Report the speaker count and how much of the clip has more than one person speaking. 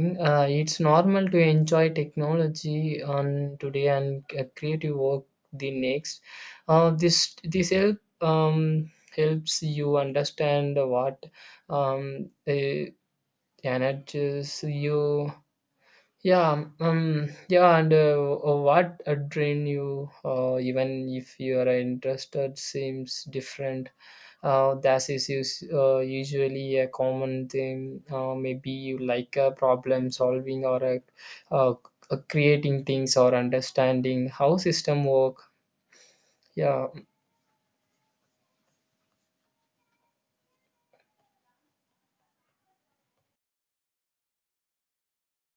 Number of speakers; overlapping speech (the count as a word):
one, no overlap